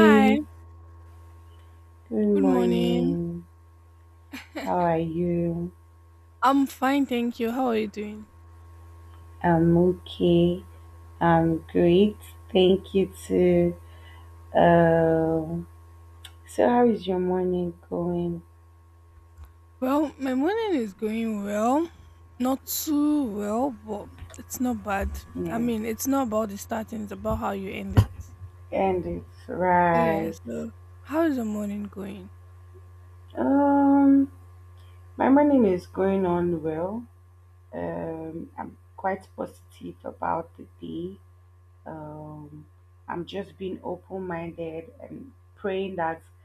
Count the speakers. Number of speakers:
2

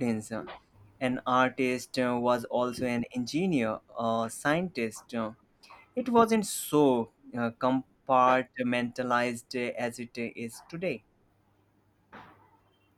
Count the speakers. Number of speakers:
1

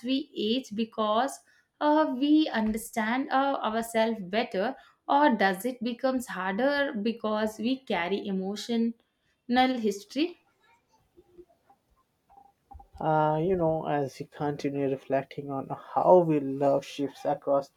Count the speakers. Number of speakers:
2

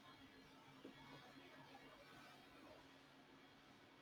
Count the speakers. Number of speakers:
0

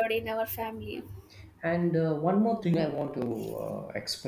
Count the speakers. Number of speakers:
2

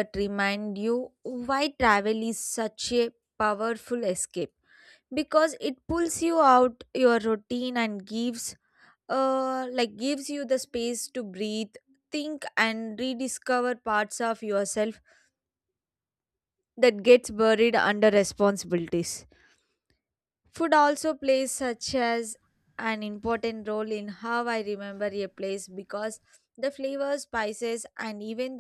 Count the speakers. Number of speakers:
1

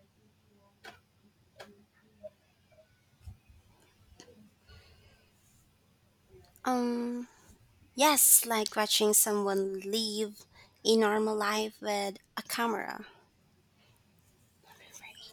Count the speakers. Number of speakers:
1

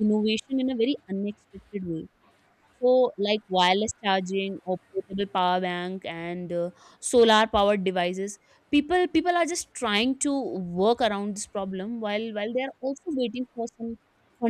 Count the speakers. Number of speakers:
1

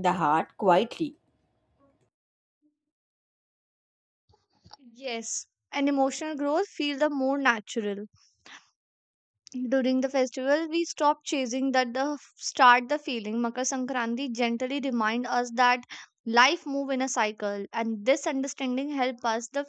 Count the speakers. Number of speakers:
2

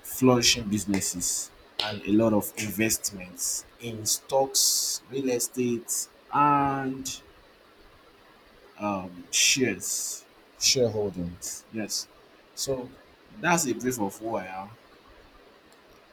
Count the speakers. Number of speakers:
1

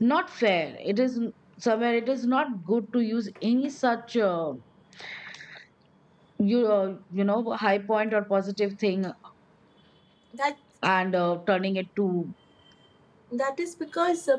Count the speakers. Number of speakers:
2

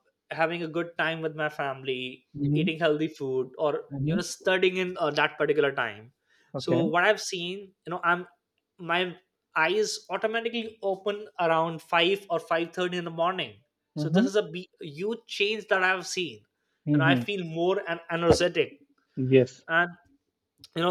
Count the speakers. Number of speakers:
2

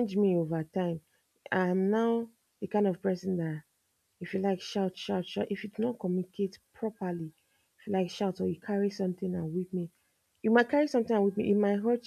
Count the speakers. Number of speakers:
1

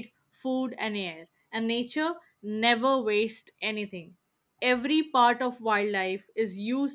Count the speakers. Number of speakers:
1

